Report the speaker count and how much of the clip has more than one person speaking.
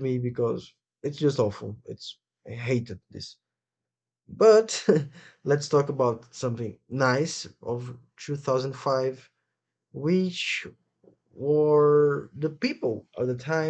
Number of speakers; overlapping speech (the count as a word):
one, no overlap